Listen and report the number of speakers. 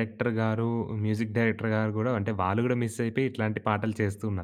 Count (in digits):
1